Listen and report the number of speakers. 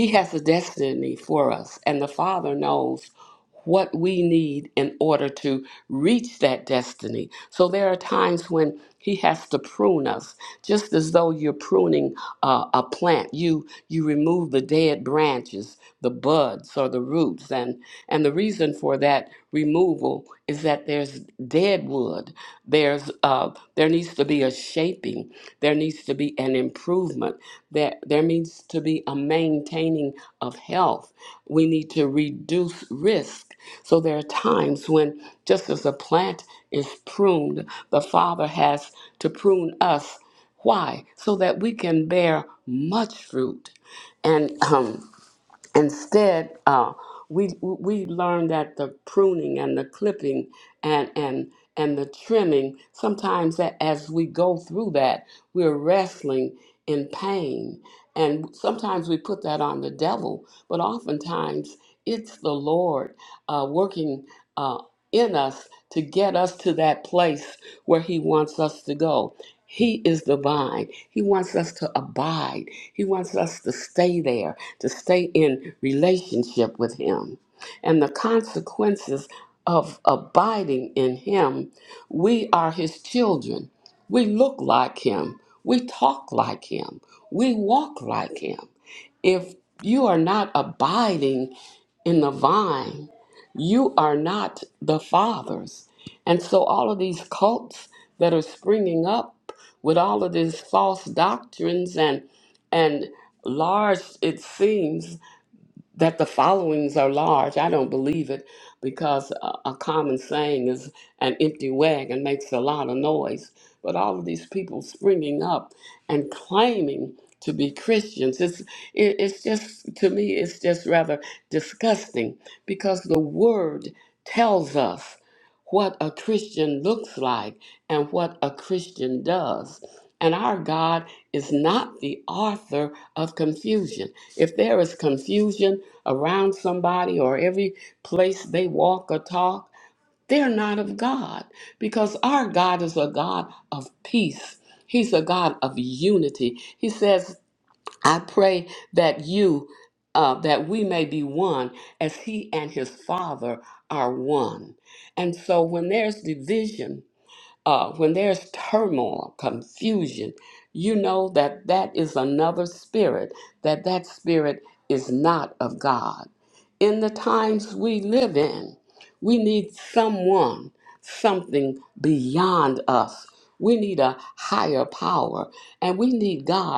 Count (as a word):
one